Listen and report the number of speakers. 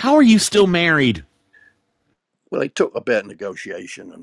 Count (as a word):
two